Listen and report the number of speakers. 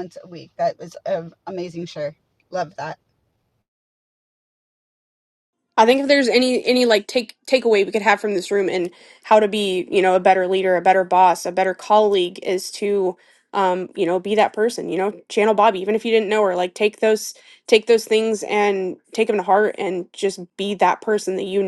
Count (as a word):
two